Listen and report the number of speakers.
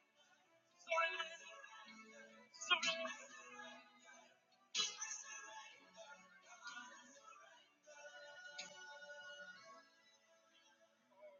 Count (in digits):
0